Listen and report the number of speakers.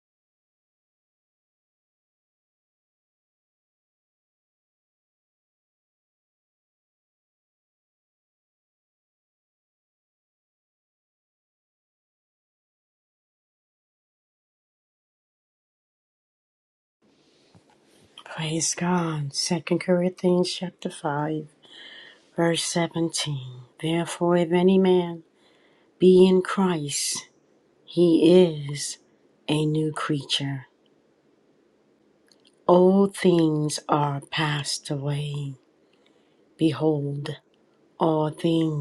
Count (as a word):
one